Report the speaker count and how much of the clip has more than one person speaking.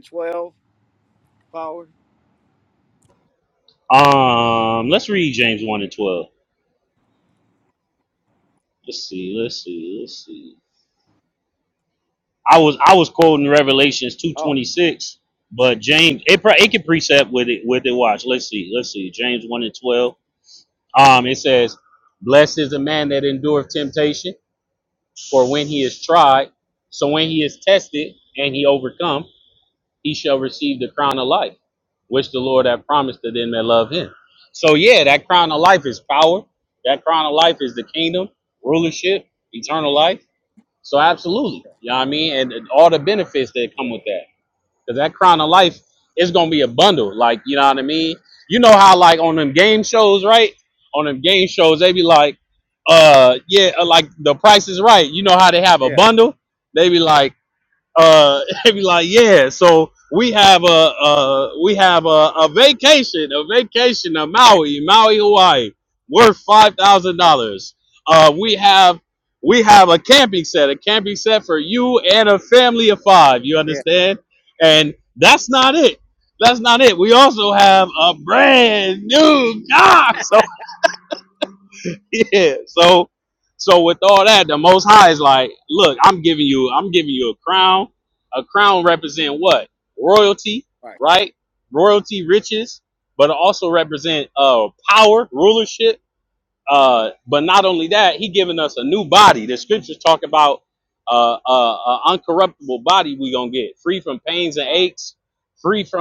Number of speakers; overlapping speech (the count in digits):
2, about 1%